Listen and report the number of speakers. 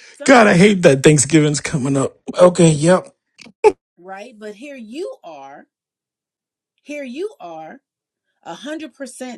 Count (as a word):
two